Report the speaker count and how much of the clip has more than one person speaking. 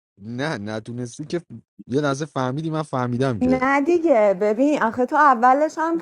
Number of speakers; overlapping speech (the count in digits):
2, about 4%